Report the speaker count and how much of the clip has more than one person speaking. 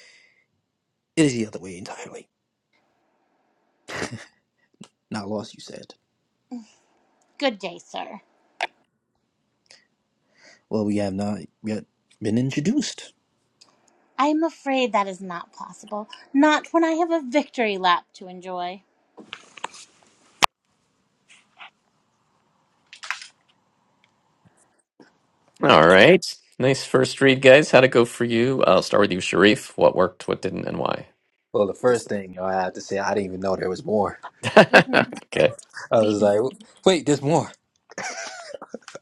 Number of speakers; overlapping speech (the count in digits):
3, about 1%